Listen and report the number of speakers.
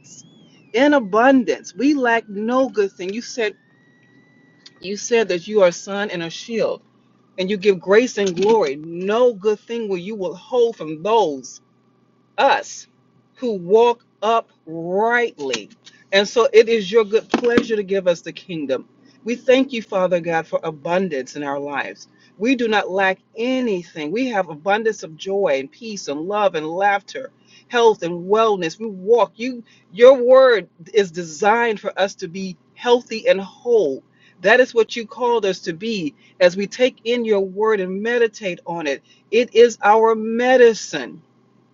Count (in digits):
1